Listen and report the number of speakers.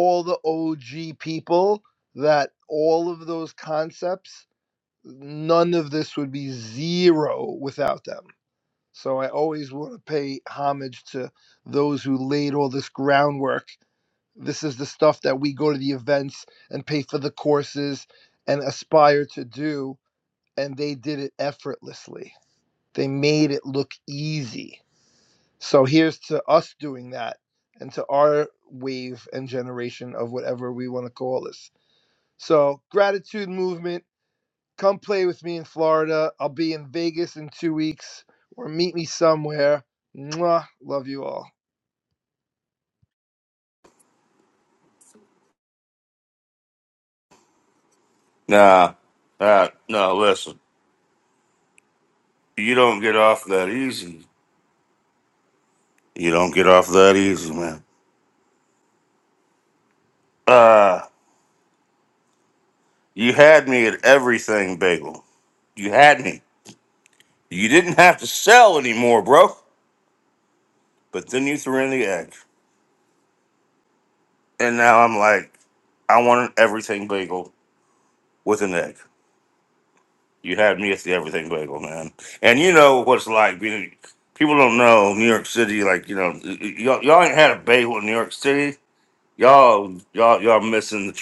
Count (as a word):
two